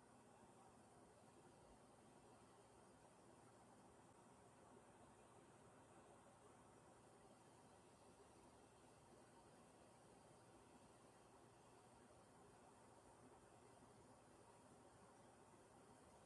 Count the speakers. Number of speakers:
zero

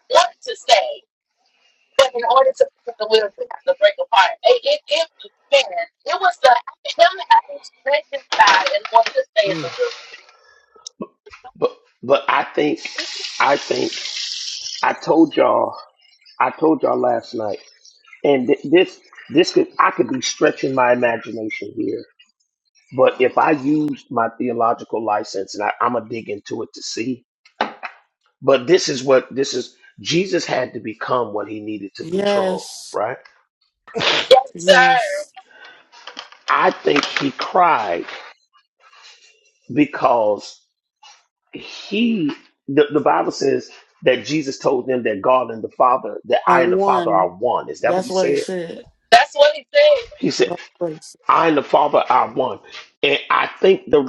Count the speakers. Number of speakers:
three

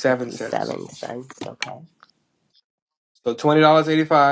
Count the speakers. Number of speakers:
two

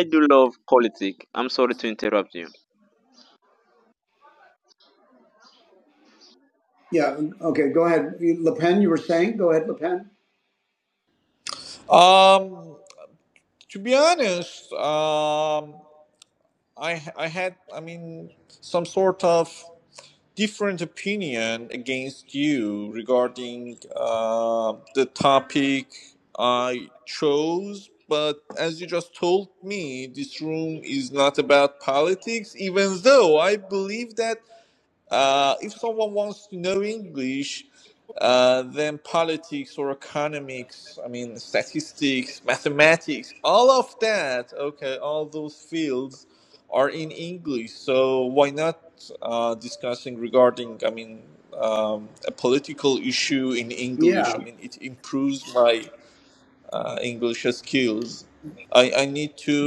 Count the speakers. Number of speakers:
three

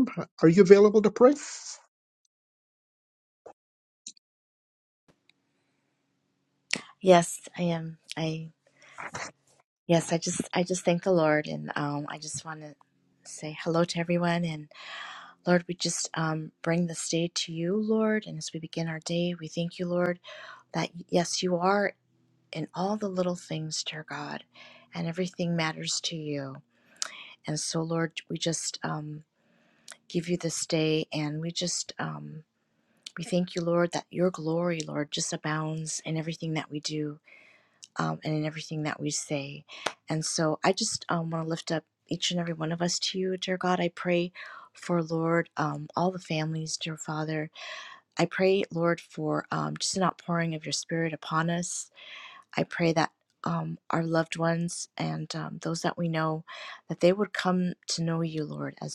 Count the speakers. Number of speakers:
two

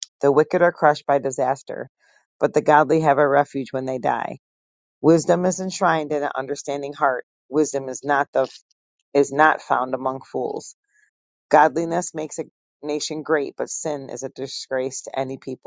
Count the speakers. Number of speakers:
one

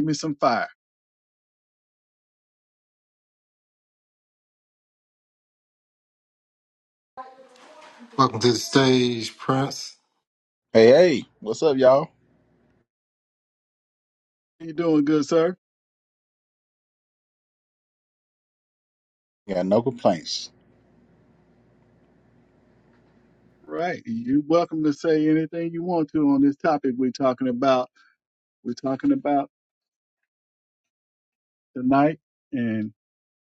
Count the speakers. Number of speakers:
three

